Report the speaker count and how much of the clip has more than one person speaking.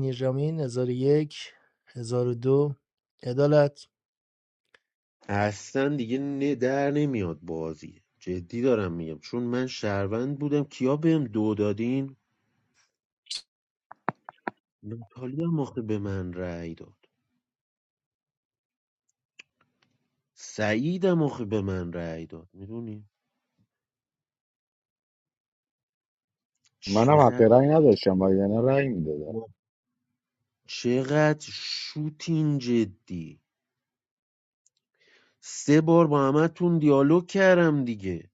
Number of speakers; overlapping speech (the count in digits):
3, about 2%